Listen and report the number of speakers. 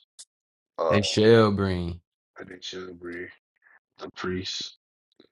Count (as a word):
two